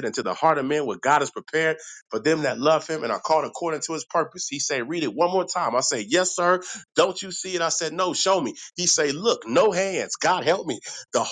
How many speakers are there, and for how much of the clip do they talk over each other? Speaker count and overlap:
1, no overlap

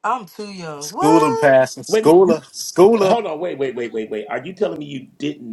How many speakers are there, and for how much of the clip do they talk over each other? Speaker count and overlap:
3, about 21%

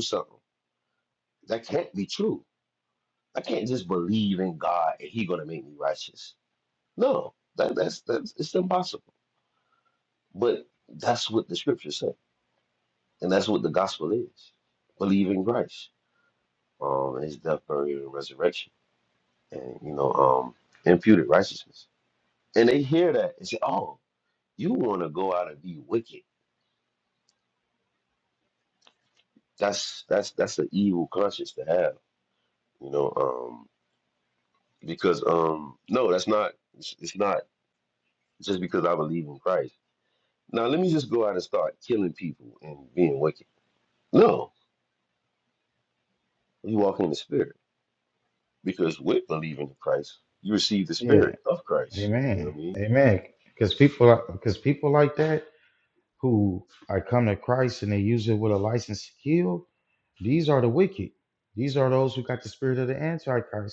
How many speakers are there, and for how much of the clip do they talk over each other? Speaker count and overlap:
2, about 2%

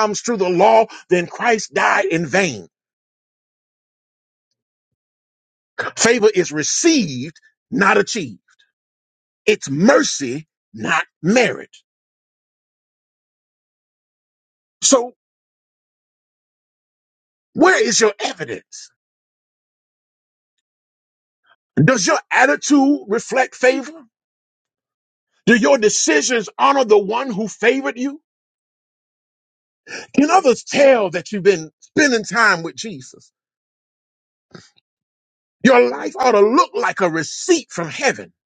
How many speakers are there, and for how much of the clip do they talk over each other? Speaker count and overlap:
1, no overlap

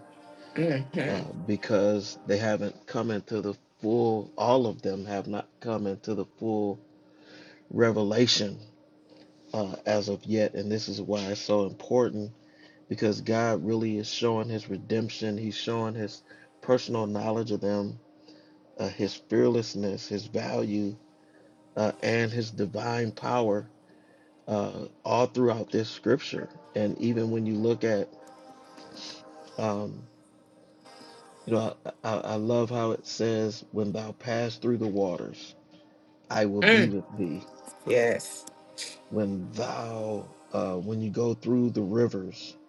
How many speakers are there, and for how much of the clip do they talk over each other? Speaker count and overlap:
2, about 1%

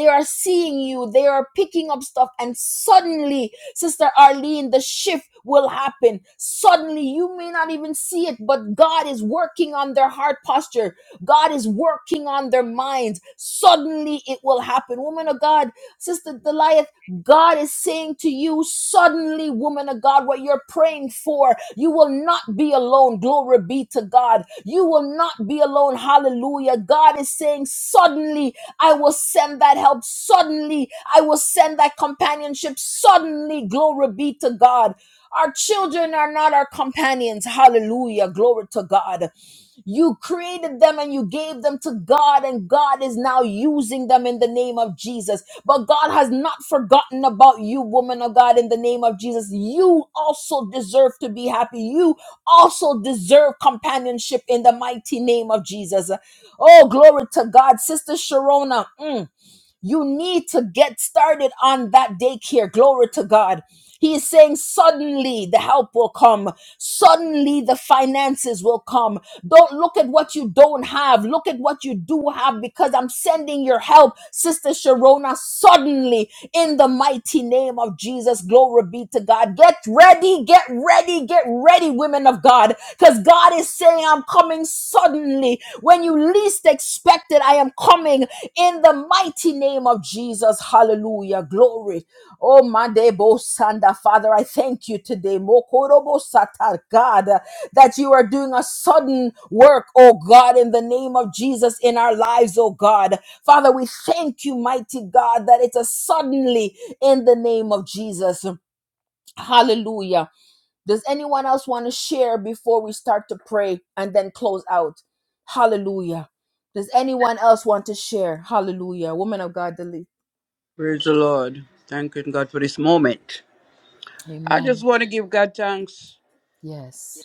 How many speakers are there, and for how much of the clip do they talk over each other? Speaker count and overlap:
2, under 1%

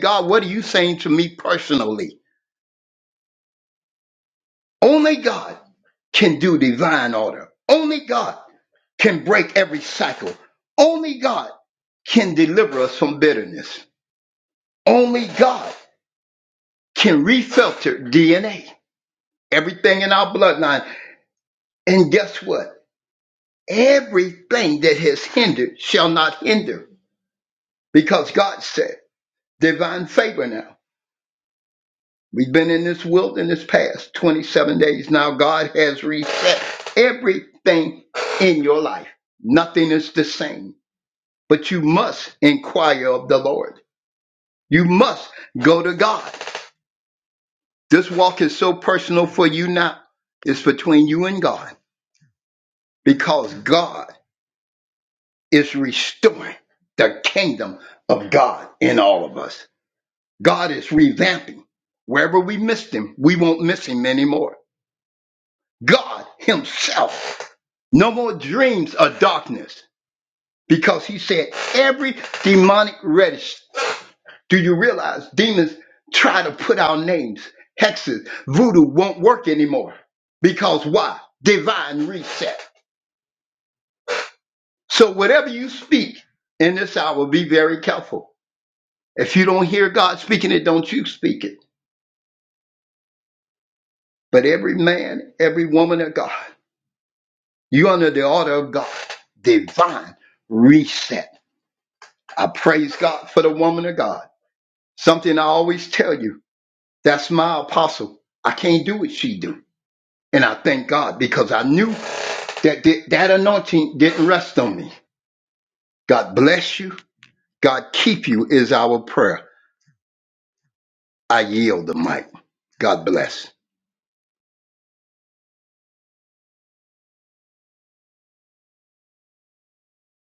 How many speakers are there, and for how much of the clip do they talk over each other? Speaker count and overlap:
1, no overlap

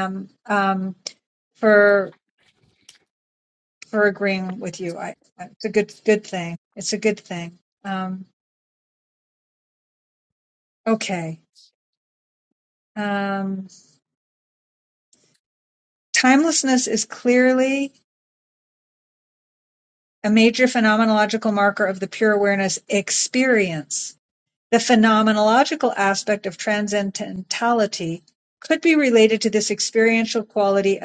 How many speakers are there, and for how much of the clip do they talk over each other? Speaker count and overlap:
1, no overlap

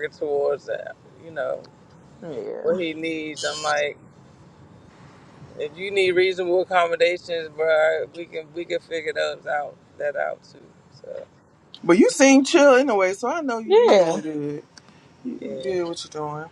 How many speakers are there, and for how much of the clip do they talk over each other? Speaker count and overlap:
3, about 7%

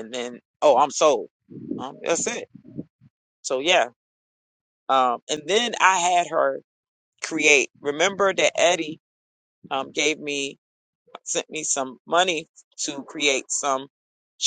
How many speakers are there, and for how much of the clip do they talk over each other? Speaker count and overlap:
1, no overlap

